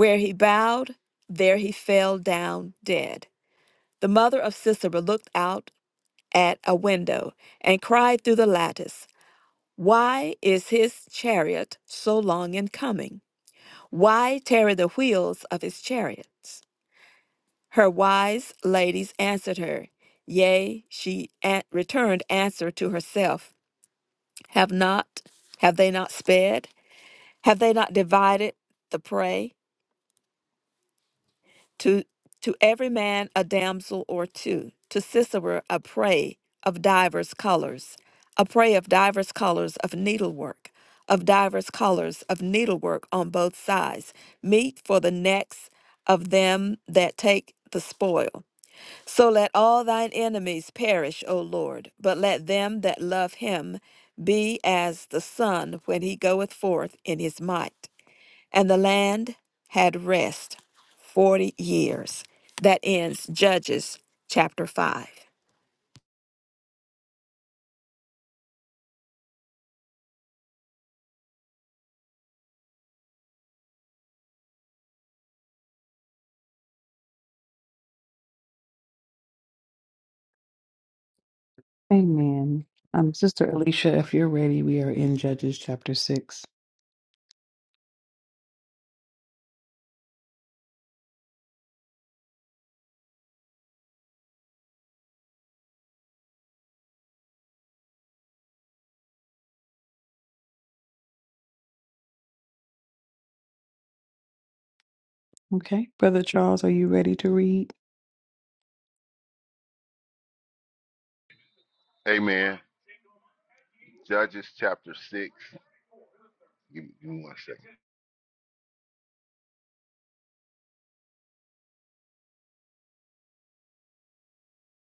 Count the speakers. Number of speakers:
3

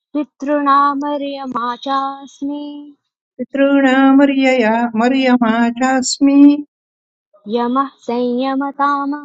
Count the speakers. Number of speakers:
2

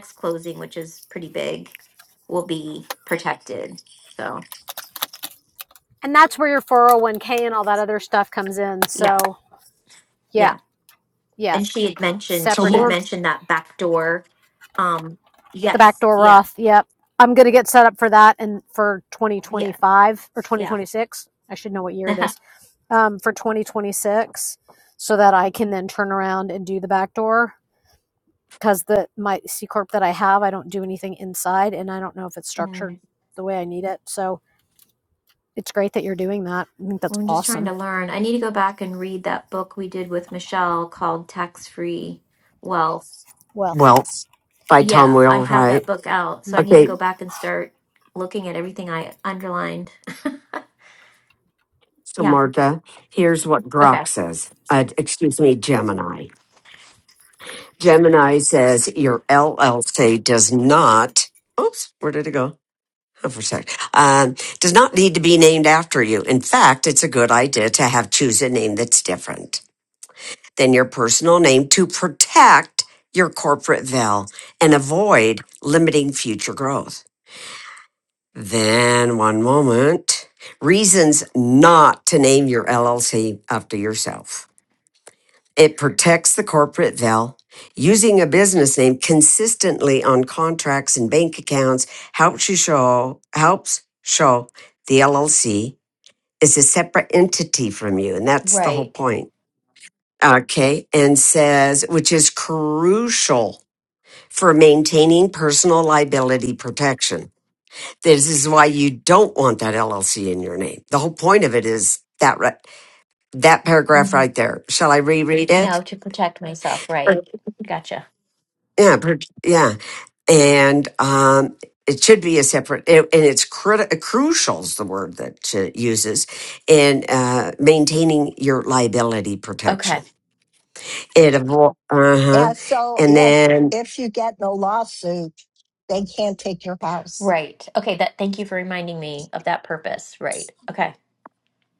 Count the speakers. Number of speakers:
4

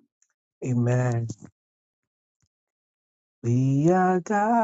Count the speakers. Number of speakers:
1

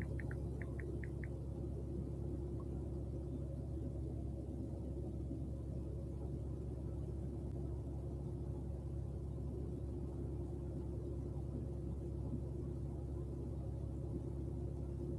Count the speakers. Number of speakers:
0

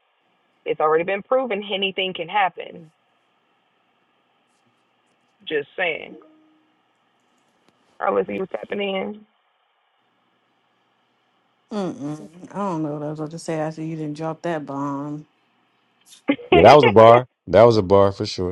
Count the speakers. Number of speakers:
3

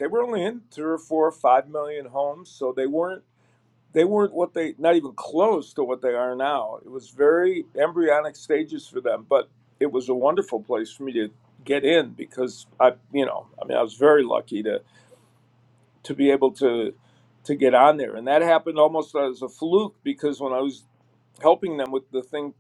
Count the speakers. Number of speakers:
1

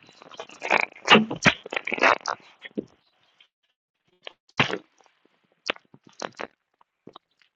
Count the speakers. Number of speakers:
0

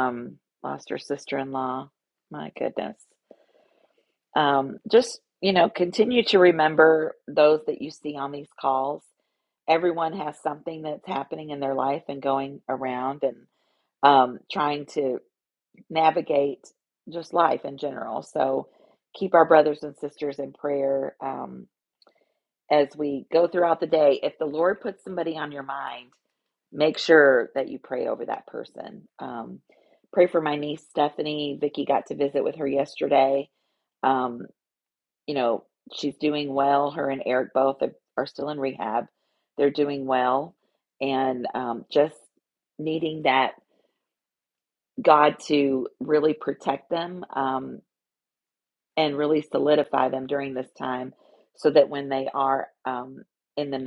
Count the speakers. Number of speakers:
1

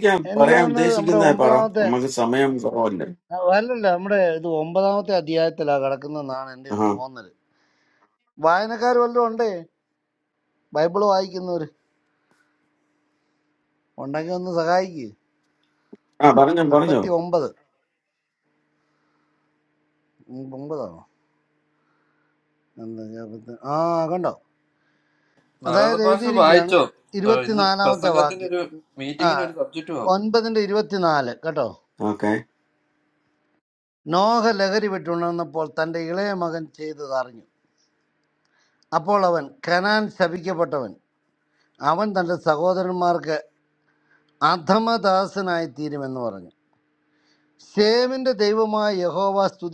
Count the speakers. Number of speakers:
3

